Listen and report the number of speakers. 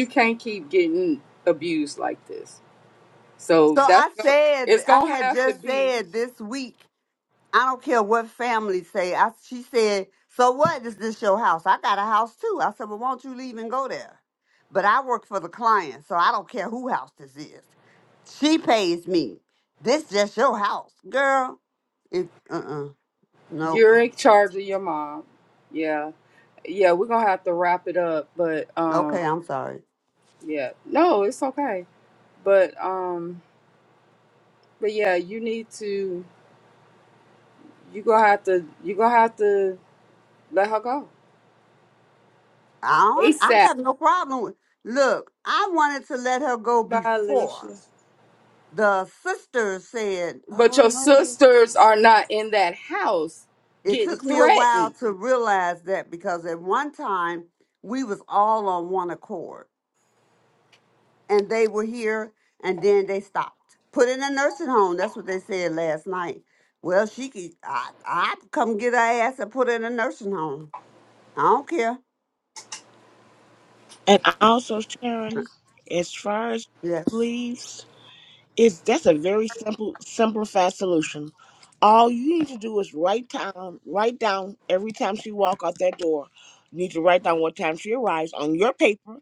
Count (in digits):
3